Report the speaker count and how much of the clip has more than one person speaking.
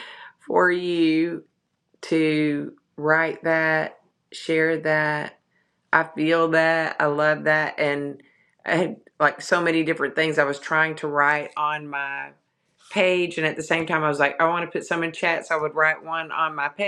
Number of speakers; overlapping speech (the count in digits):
1, no overlap